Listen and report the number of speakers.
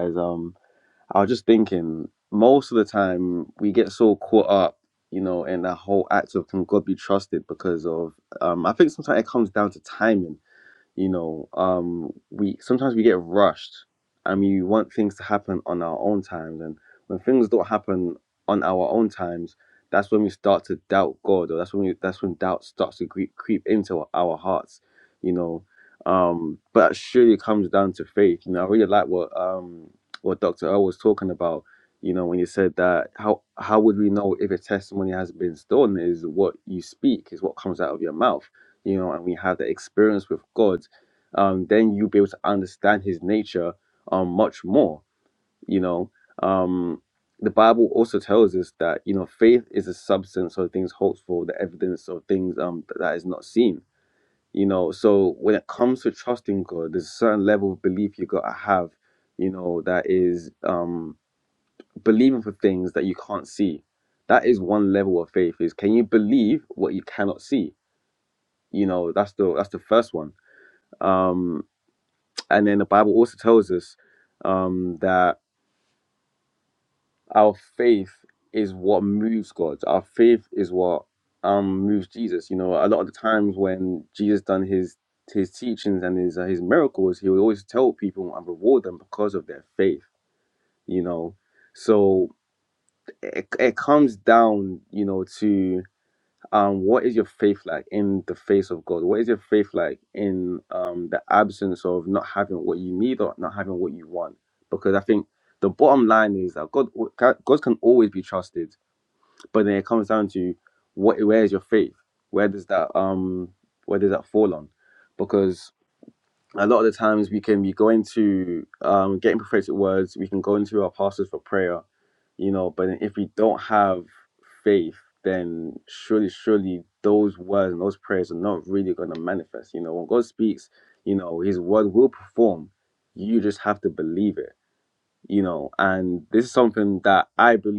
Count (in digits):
1